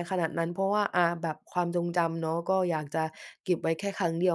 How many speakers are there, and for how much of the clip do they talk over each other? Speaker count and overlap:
1, no overlap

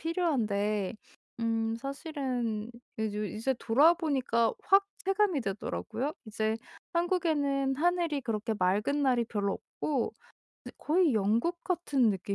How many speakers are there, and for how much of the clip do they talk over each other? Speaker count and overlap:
1, no overlap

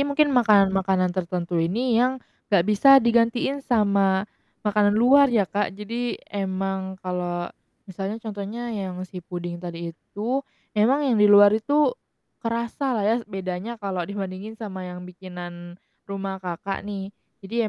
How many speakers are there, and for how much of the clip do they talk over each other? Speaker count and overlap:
1, no overlap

